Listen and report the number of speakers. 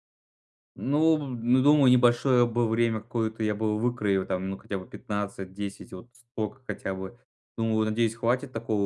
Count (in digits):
1